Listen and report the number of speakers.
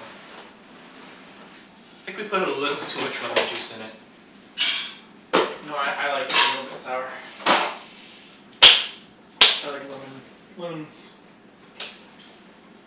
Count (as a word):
two